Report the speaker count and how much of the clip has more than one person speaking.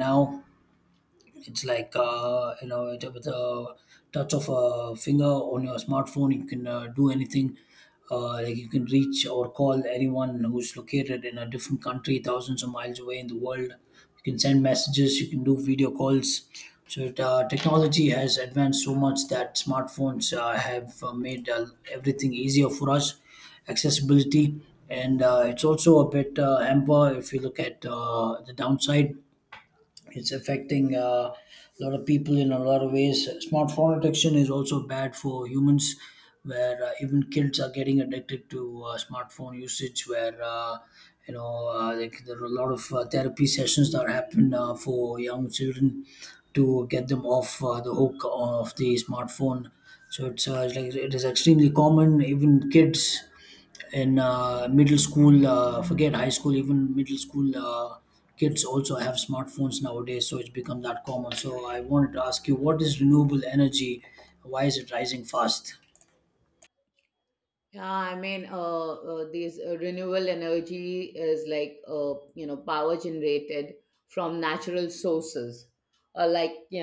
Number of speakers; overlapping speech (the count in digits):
2, no overlap